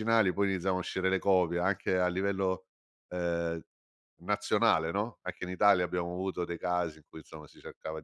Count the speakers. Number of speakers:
1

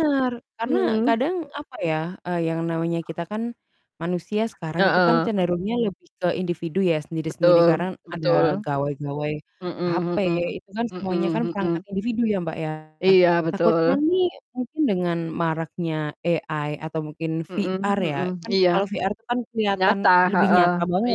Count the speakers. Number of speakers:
2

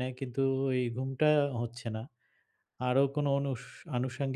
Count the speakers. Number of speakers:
1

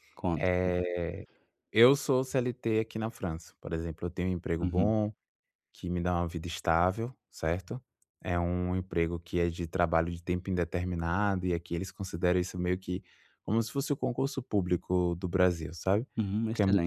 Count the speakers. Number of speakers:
2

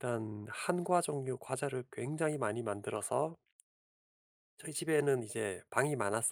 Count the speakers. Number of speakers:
1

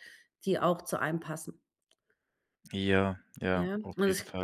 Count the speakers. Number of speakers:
2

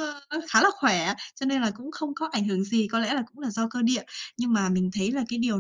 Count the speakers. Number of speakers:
1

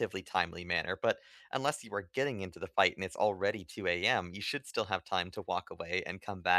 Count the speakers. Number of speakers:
1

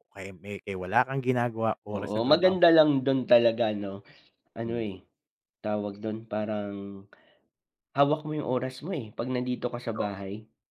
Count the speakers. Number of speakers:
2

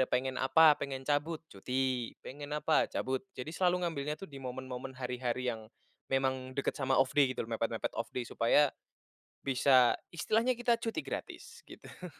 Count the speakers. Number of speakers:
1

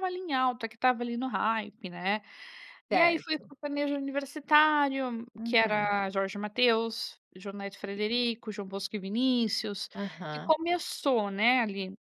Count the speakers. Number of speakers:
2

